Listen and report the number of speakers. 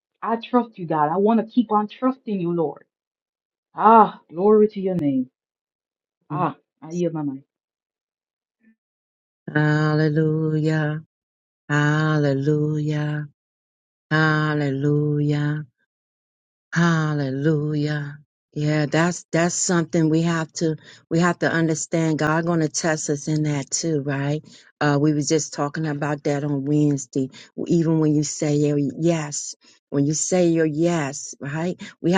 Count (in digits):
2